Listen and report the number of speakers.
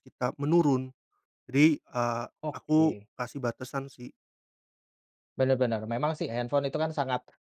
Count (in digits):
2